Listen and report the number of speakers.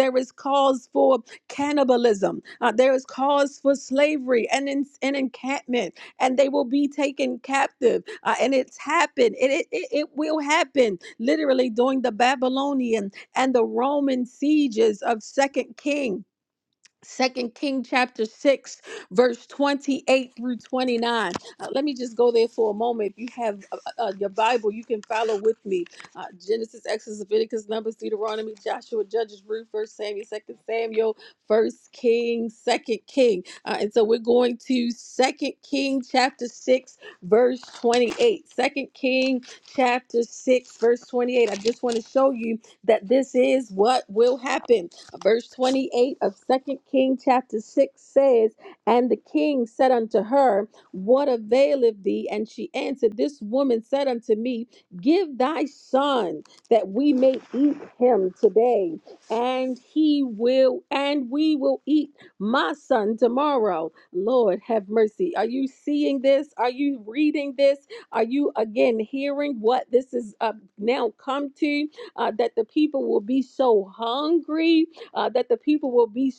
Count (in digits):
1